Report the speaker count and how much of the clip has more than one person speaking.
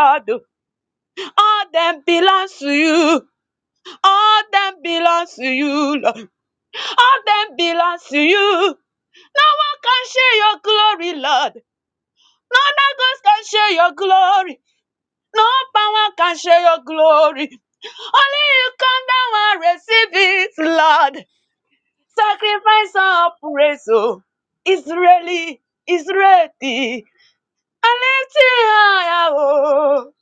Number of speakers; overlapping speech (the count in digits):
1, no overlap